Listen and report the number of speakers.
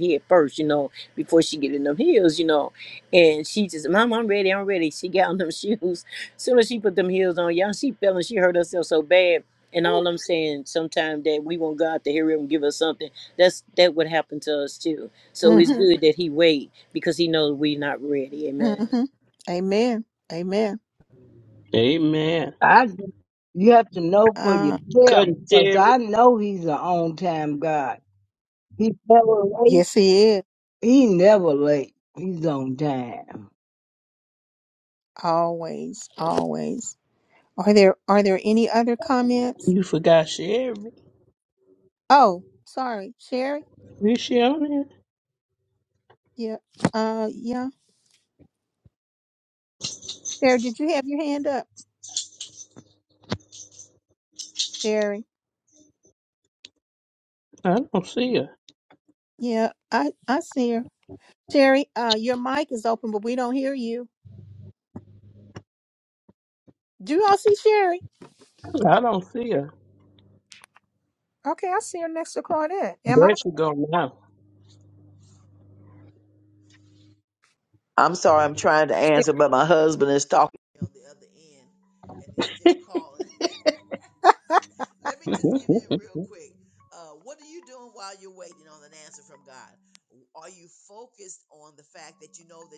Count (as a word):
five